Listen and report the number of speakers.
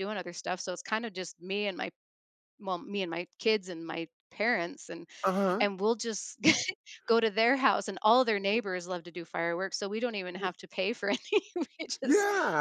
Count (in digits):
2